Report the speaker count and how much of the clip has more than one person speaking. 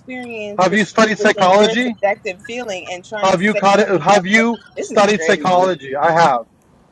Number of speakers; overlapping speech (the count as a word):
two, about 50%